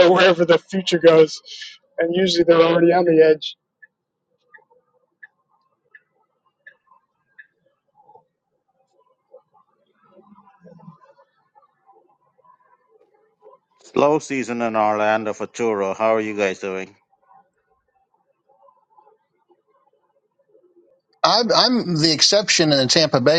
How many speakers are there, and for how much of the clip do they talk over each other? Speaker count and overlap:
three, no overlap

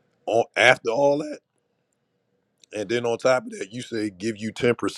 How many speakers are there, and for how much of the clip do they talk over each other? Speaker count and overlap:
one, no overlap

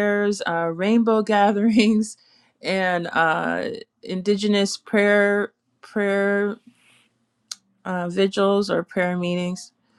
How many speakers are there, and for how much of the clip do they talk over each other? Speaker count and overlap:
one, no overlap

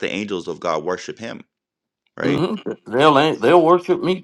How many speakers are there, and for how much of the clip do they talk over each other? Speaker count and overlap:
two, about 5%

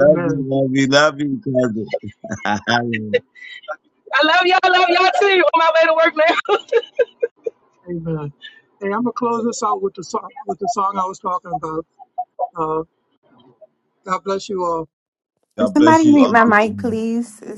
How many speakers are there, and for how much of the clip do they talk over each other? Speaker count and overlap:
four, about 8%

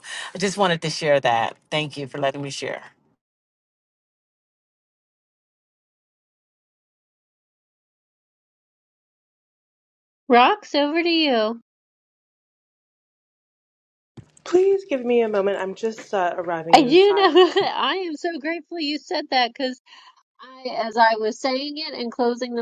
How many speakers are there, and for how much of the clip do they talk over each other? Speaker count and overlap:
three, about 3%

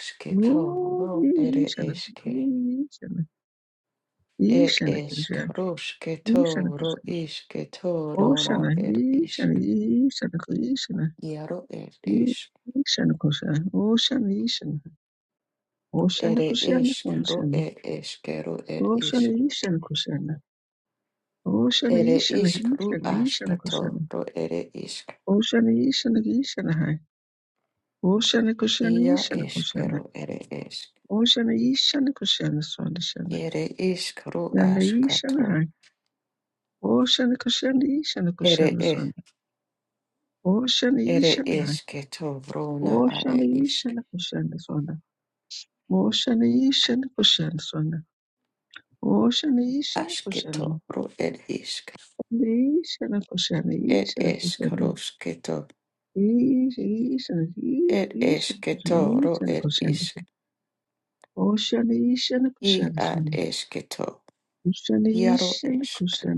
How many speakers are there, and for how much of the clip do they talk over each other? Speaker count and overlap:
two, about 30%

